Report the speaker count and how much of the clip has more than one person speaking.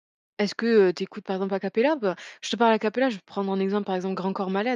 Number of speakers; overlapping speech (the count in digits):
1, no overlap